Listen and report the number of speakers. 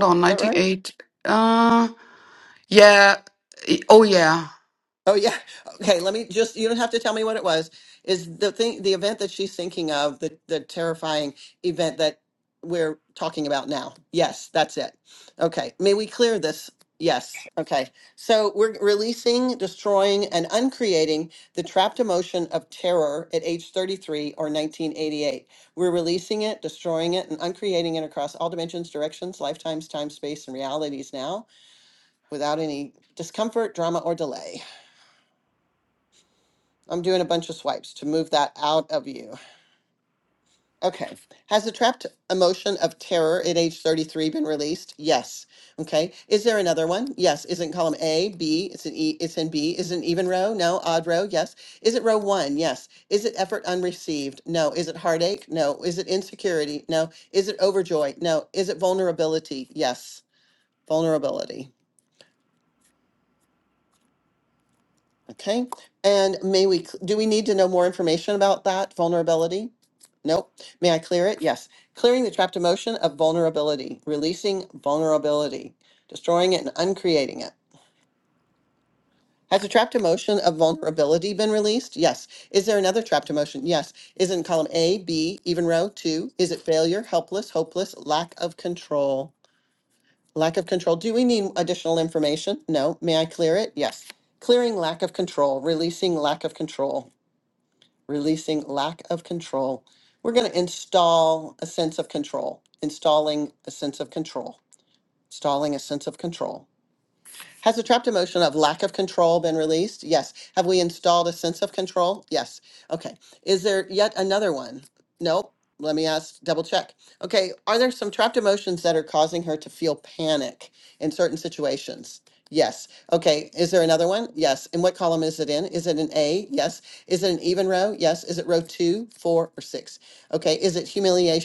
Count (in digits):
2